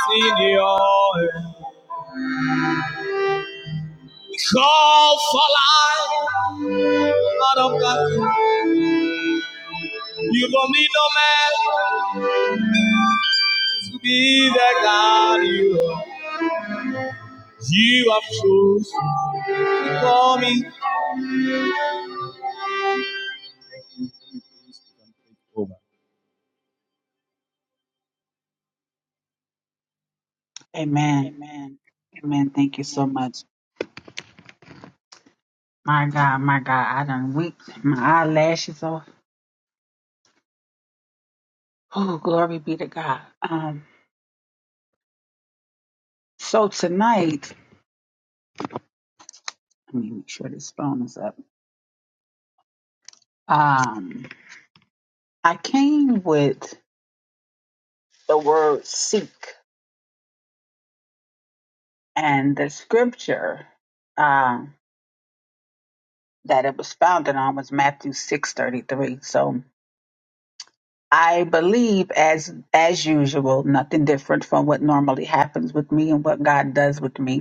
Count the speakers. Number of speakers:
two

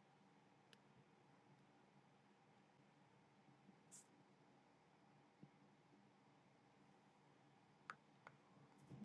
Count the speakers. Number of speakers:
zero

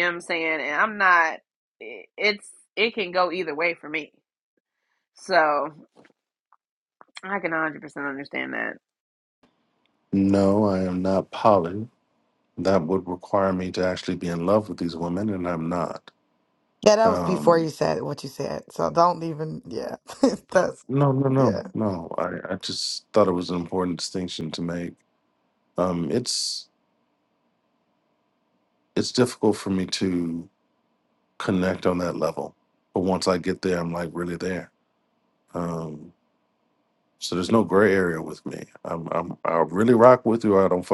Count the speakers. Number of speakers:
three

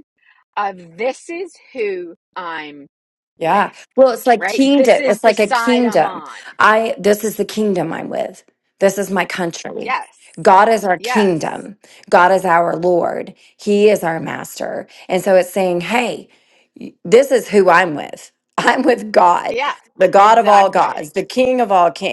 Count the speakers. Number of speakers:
two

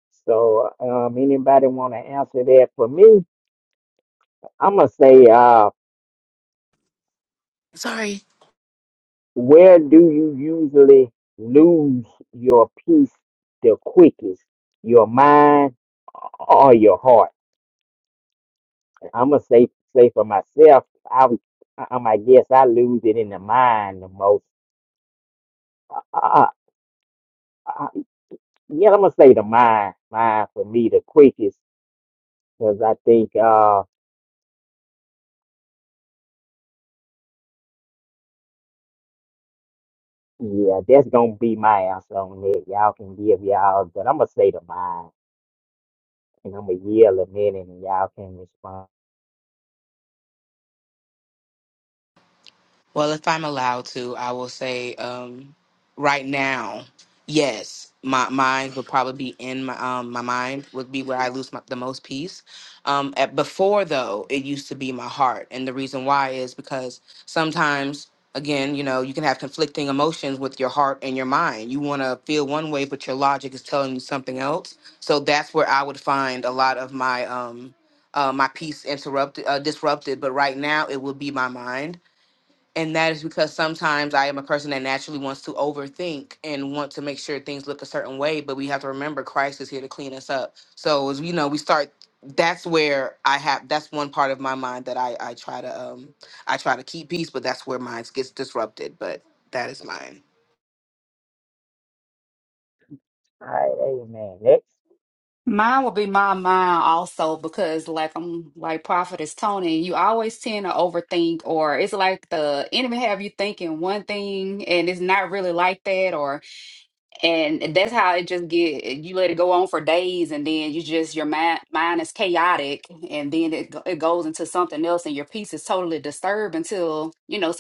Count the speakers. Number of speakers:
three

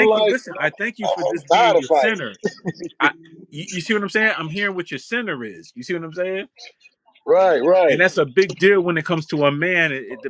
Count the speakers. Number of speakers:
two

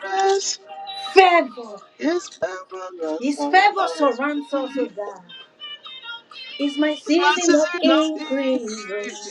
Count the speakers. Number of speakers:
two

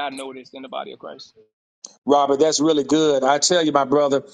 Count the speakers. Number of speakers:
two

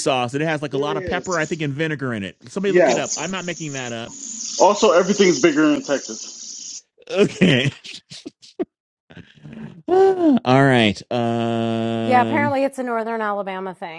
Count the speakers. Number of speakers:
three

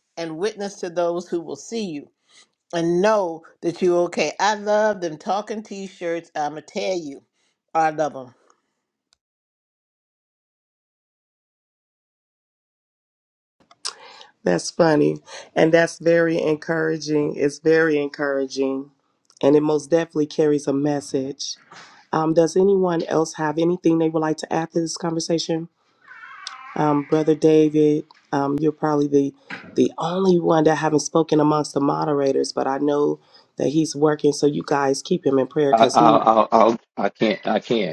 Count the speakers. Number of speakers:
three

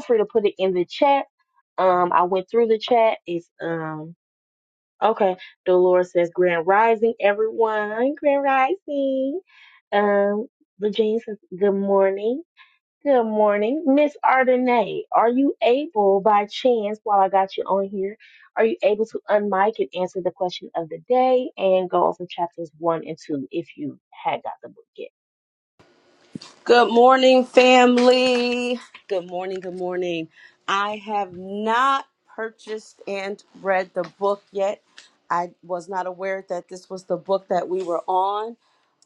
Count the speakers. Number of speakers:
two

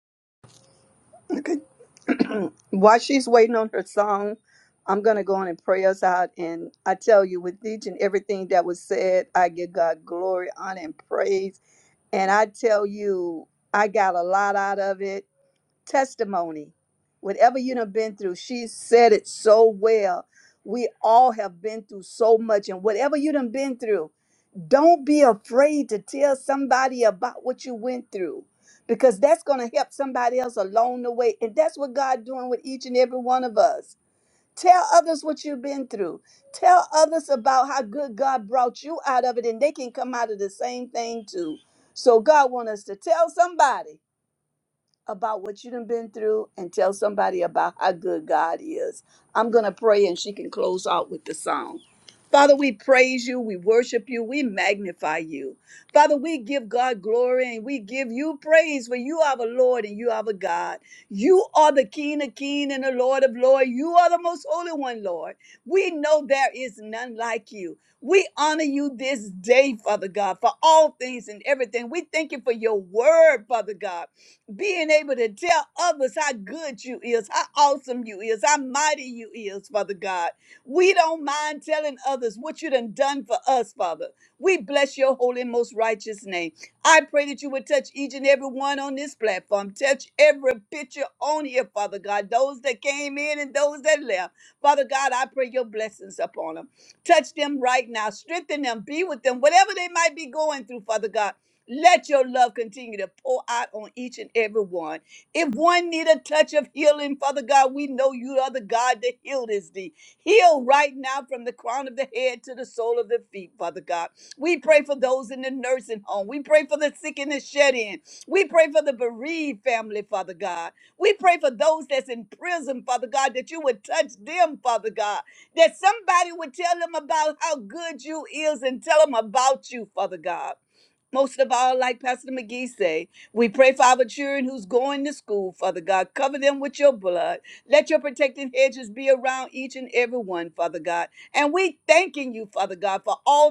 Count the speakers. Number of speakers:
one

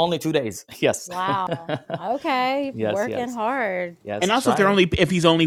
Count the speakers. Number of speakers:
three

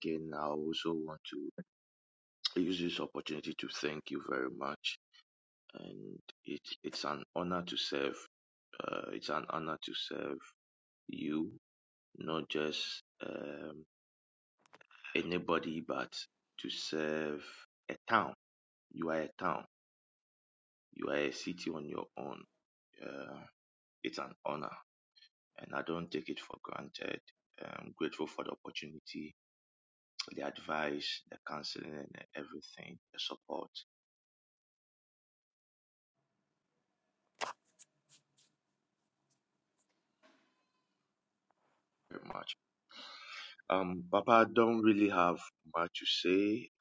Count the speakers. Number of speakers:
one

